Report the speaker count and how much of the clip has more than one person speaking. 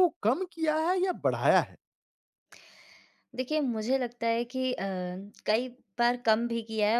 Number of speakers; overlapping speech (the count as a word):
two, no overlap